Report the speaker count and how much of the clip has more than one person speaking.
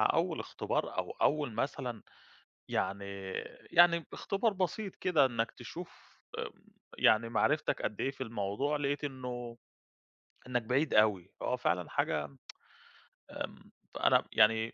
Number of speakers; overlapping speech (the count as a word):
one, no overlap